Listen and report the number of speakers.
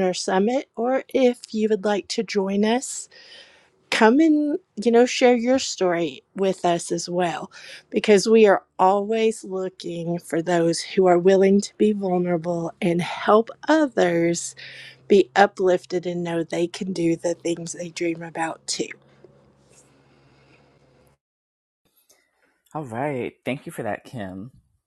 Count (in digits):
2